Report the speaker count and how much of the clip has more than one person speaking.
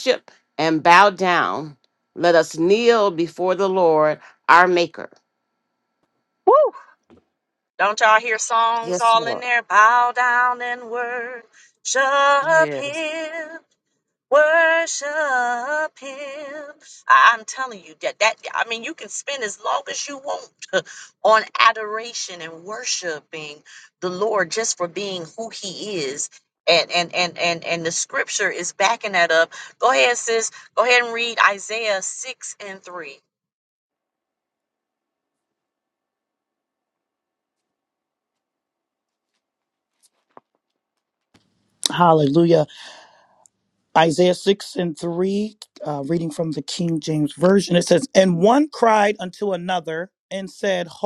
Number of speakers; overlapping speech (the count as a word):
three, about 1%